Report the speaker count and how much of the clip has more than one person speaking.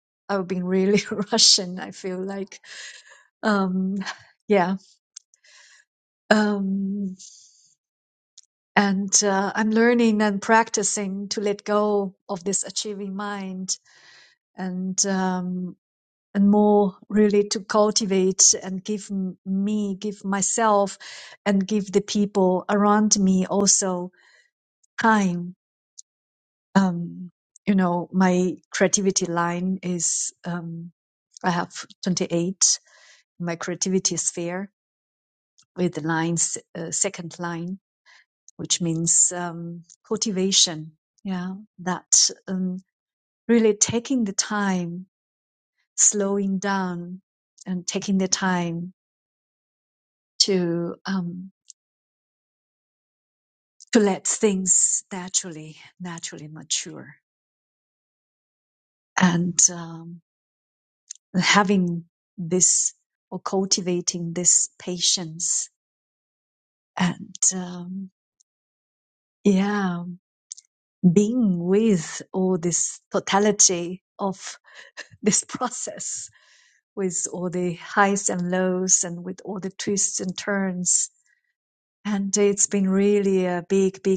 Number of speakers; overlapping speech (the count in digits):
1, no overlap